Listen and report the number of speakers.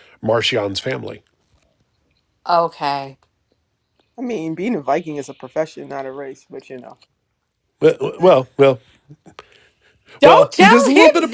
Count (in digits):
3